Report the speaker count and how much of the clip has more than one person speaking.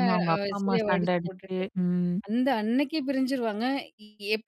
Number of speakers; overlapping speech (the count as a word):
two, about 30%